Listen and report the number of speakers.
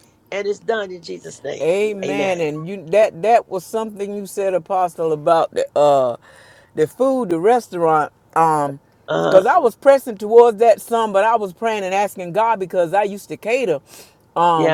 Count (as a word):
two